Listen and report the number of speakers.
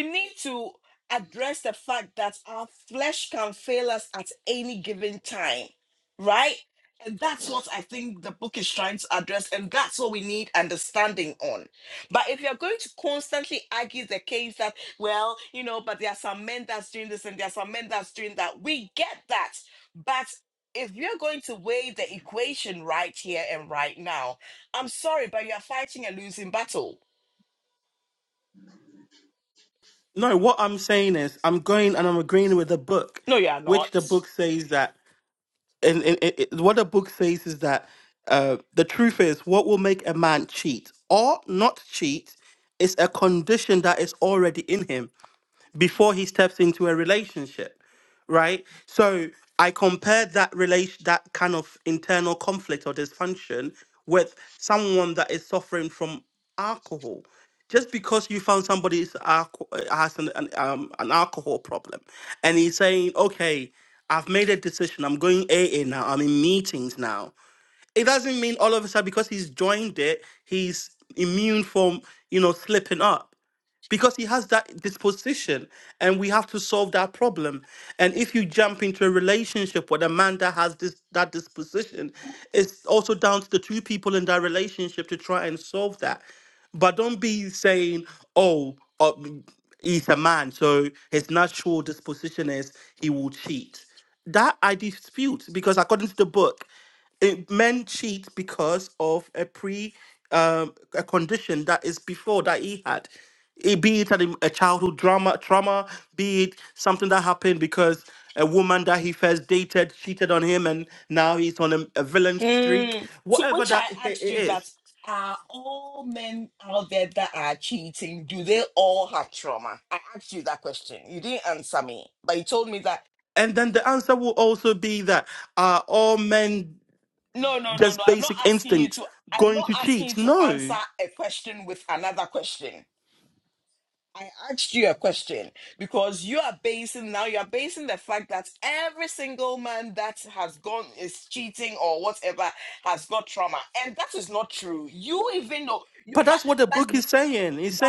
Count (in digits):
2